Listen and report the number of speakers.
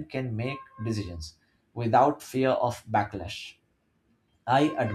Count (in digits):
1